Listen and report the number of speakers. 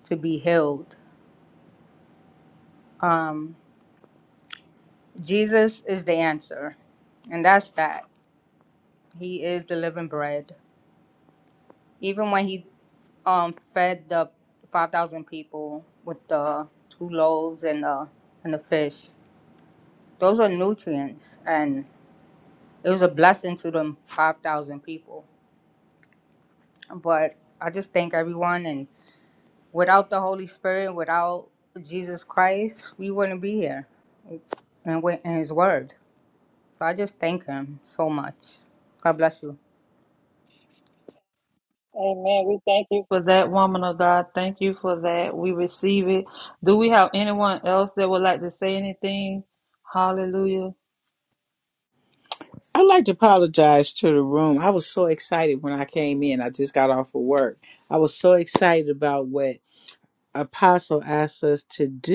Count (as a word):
three